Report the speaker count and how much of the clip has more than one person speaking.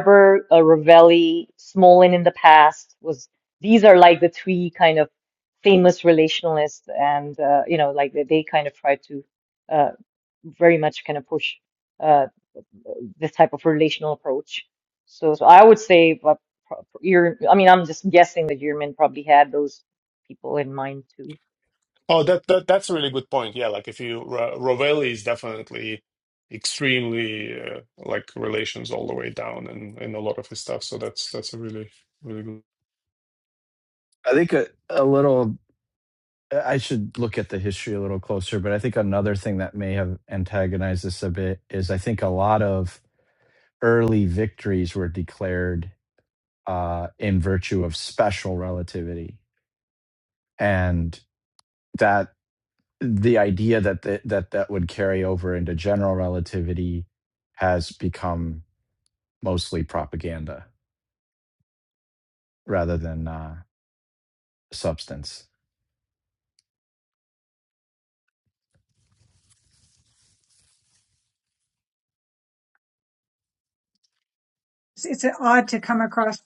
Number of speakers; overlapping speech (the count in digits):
4, no overlap